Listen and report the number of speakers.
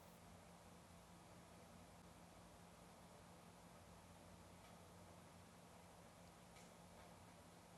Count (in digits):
0